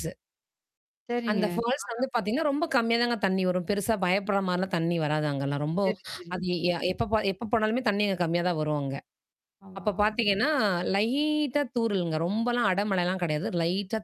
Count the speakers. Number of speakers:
two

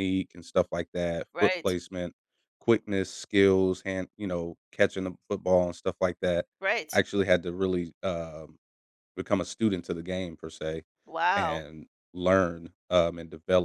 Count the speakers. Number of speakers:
two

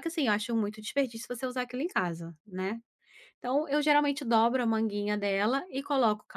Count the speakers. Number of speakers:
one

